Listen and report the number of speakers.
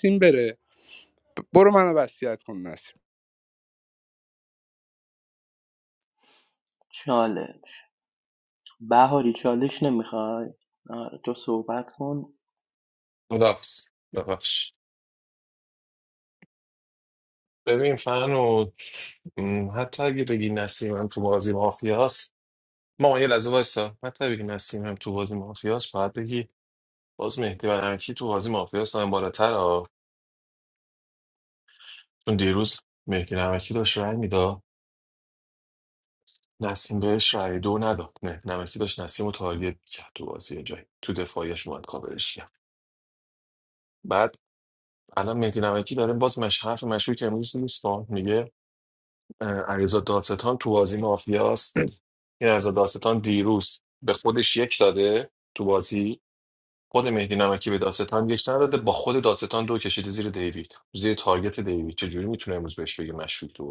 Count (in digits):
3